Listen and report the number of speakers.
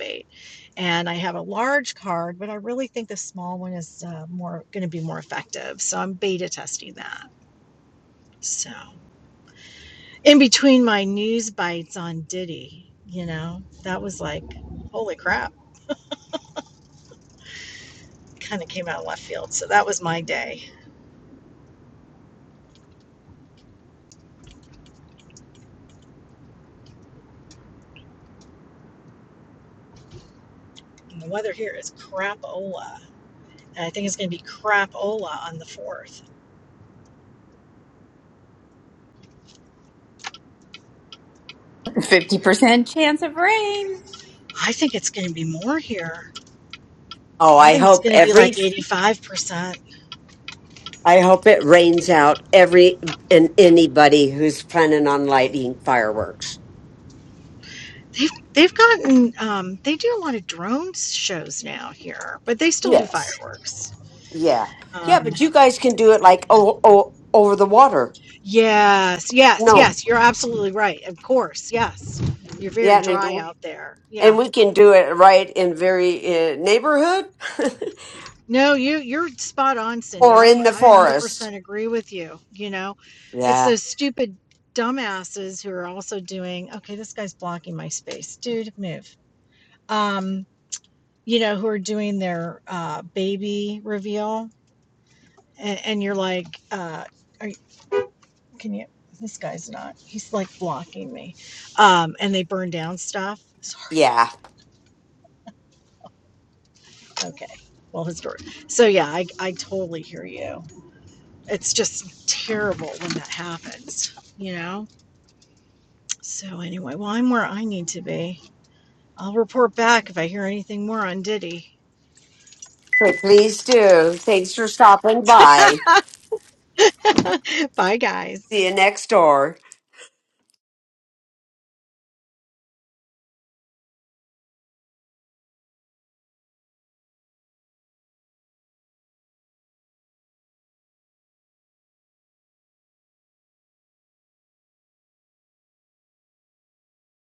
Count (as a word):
three